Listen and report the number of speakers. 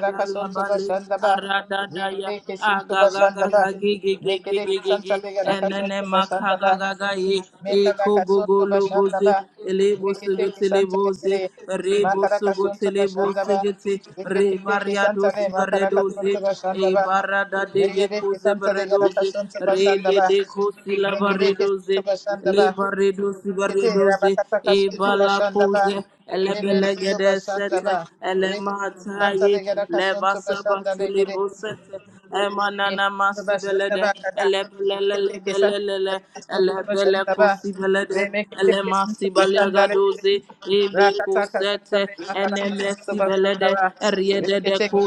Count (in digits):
2